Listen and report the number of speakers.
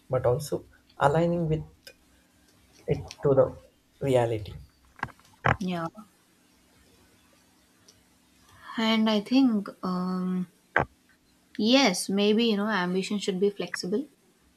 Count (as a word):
two